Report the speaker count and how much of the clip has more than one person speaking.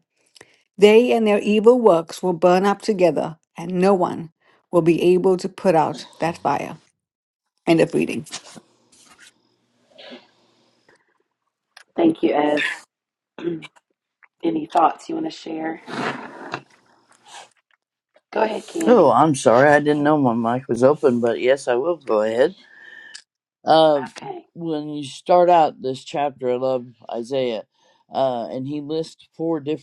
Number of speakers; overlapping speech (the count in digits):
3, about 1%